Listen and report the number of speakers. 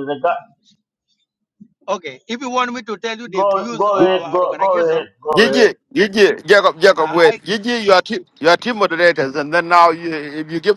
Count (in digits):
3